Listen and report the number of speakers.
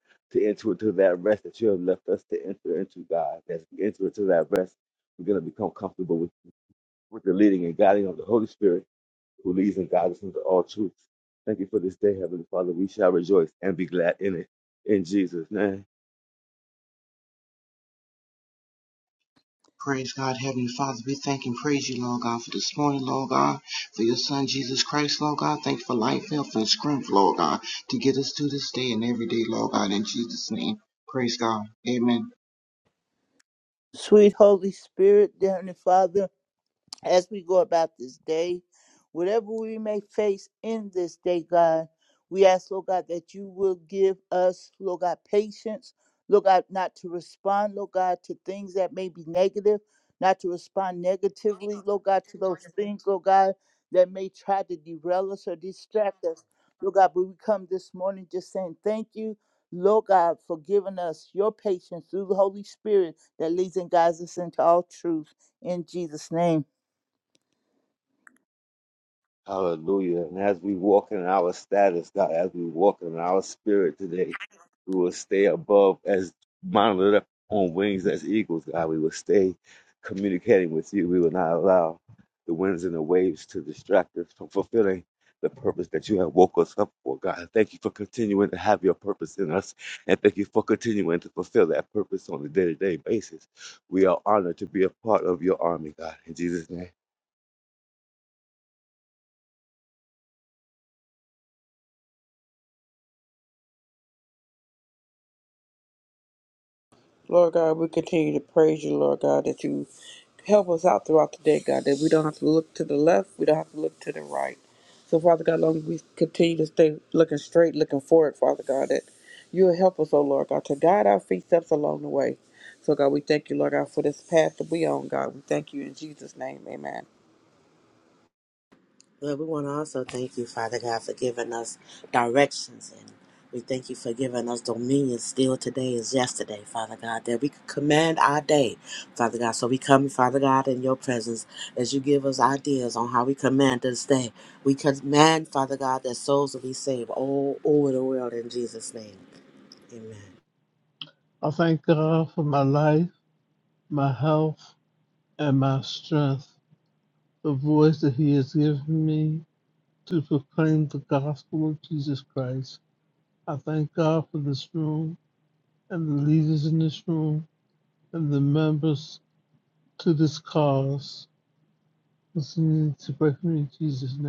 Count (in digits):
6